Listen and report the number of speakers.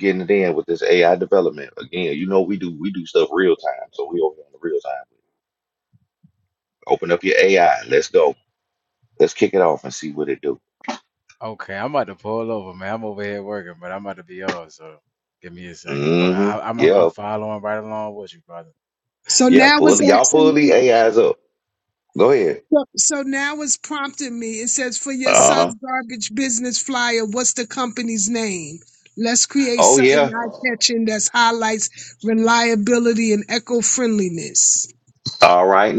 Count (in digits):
3